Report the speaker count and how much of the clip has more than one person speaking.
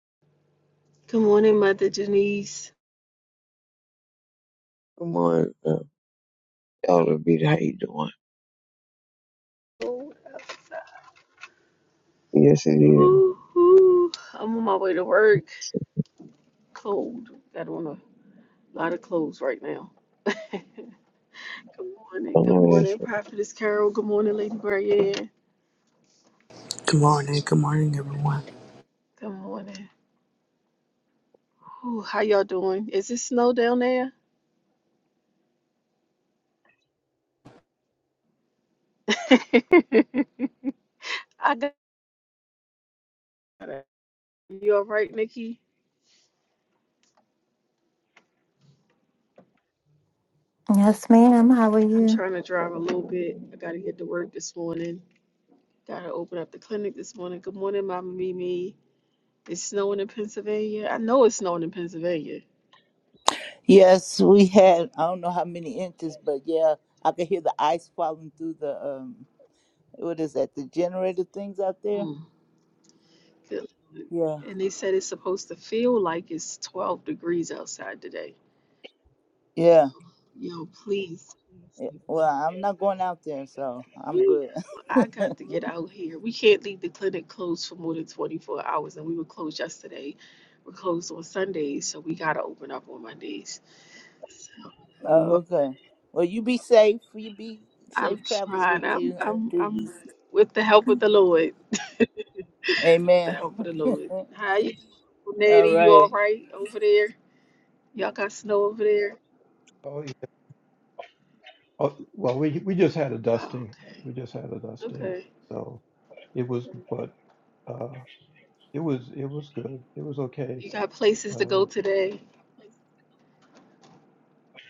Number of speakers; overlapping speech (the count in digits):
6, about 5%